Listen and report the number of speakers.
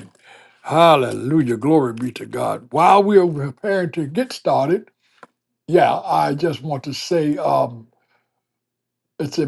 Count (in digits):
1